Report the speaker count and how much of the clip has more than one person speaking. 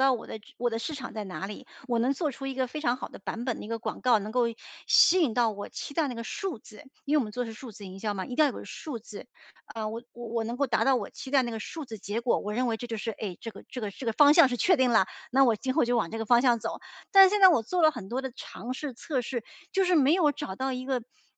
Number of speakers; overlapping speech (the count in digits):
1, no overlap